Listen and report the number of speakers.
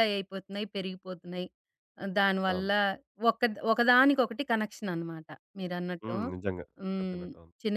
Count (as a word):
two